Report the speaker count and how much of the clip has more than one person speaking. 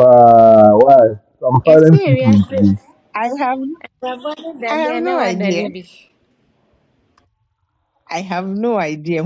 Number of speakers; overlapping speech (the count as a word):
three, about 20%